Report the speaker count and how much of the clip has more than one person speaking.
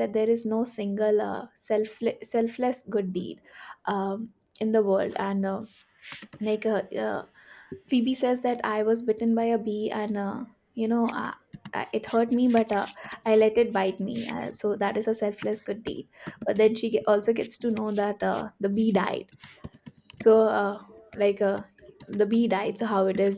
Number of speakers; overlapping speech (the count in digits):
1, no overlap